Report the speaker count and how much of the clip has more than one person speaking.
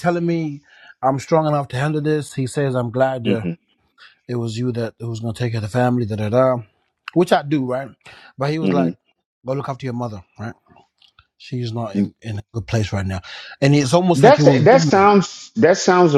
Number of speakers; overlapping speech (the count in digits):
2, about 8%